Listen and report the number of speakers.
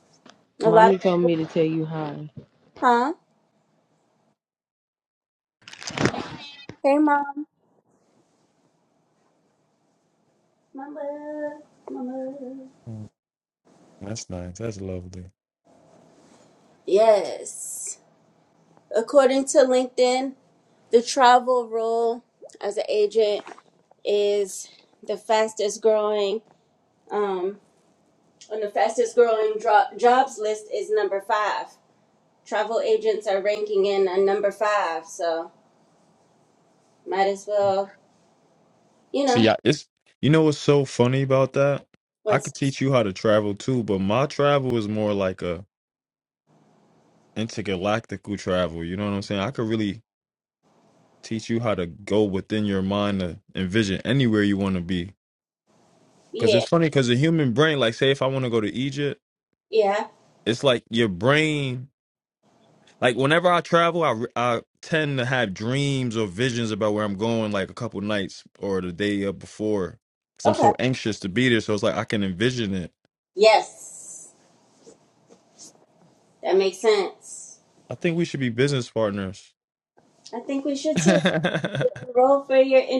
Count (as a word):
three